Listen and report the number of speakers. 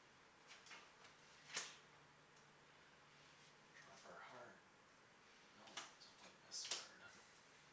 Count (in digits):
1